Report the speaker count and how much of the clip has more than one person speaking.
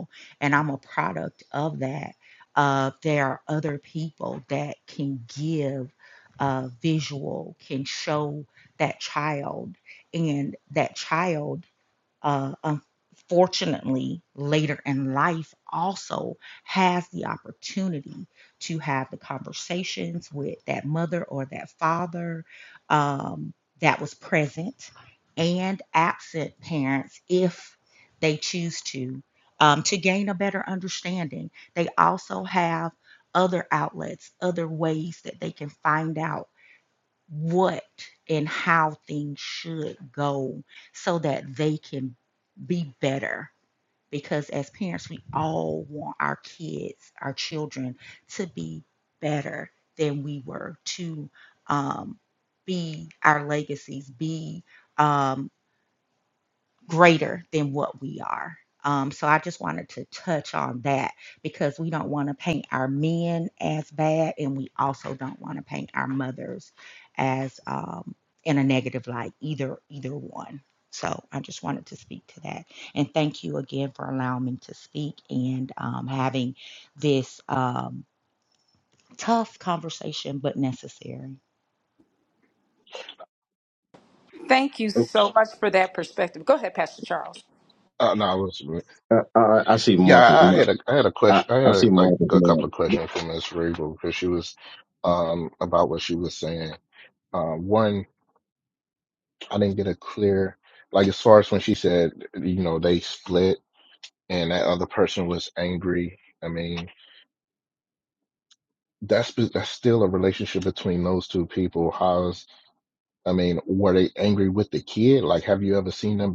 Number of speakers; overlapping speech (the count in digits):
4, about 1%